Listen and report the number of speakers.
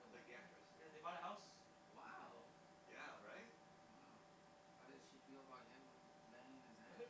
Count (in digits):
3